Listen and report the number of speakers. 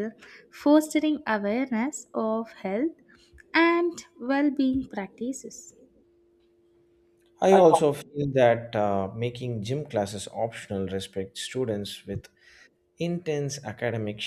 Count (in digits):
2